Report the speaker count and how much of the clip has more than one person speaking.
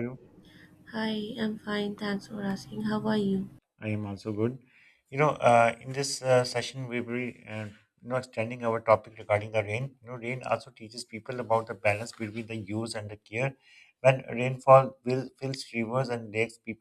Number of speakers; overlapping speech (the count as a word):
two, no overlap